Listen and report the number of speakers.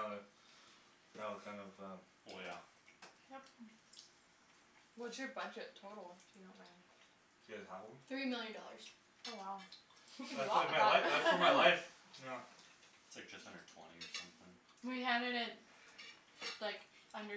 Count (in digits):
4